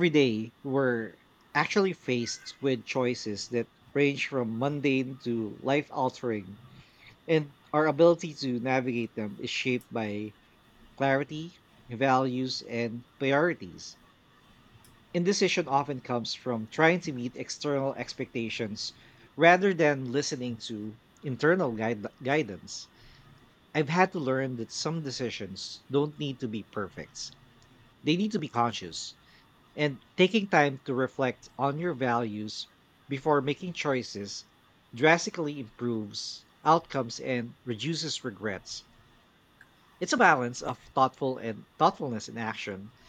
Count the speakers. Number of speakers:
1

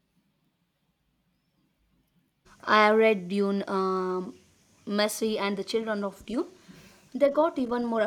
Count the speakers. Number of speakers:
1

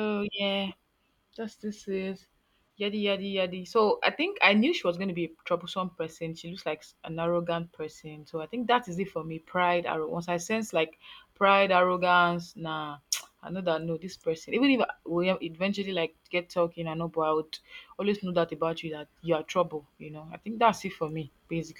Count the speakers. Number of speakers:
1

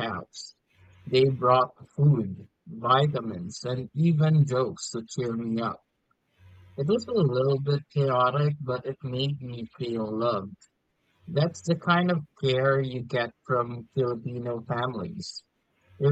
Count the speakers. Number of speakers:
1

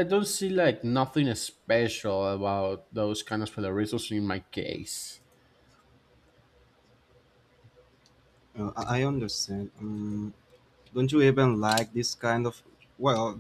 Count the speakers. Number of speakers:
2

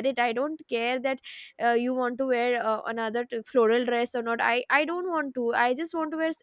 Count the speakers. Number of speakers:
1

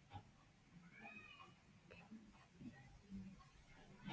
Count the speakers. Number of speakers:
0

